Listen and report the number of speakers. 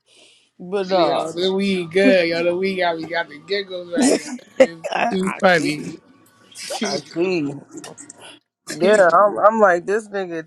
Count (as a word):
two